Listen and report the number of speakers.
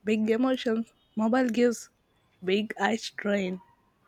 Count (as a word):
one